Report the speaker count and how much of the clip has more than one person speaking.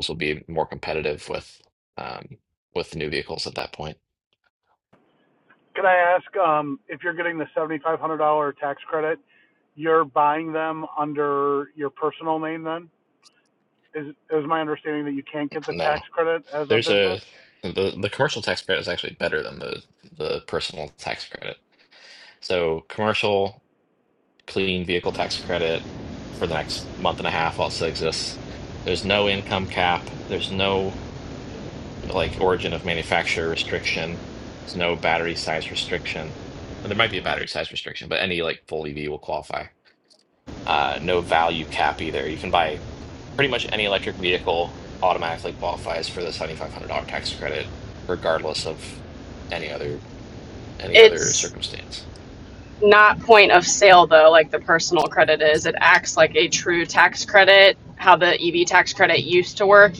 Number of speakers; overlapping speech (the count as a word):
three, about 2%